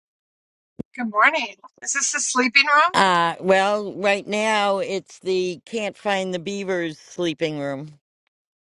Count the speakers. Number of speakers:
two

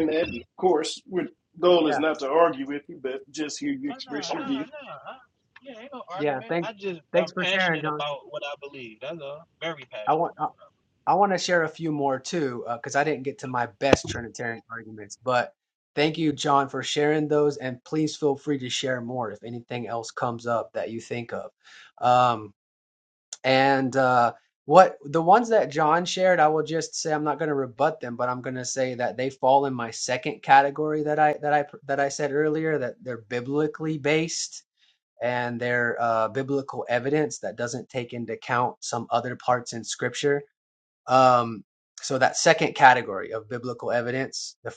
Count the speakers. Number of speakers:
three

